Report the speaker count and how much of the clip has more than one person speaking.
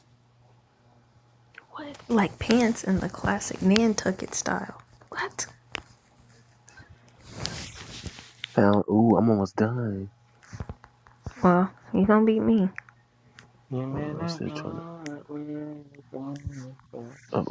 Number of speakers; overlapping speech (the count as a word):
three, about 5%